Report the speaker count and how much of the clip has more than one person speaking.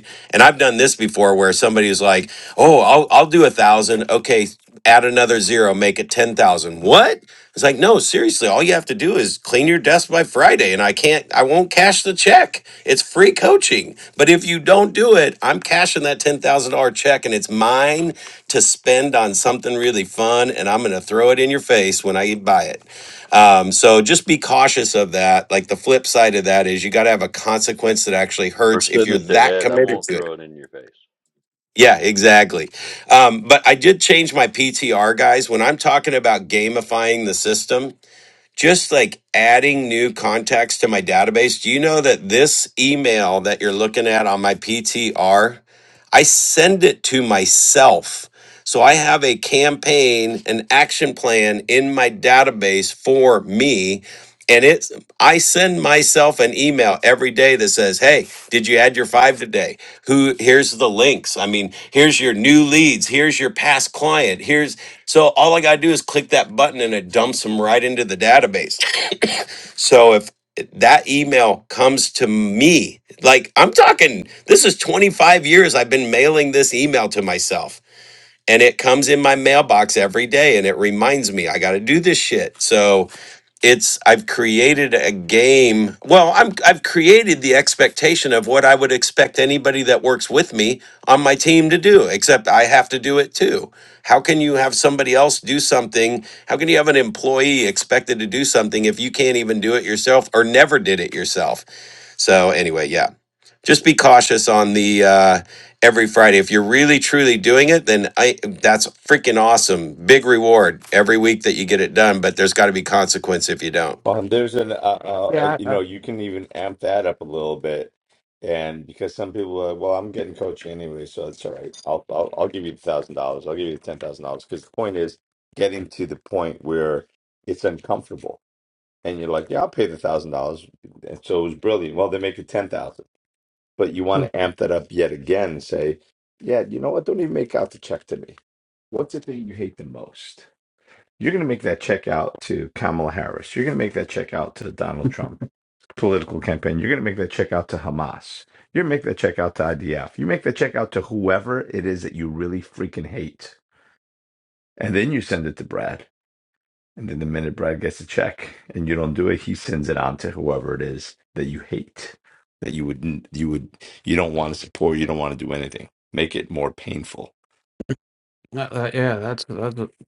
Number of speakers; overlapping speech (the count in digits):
4, about 1%